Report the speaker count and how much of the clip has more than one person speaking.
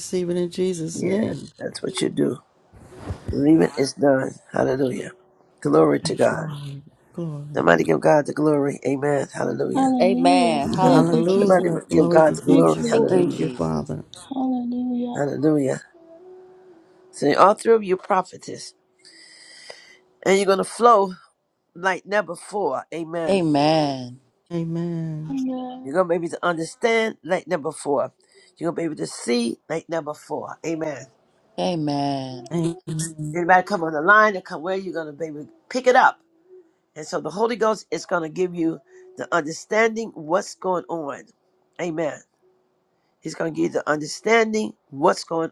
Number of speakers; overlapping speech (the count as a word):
four, about 12%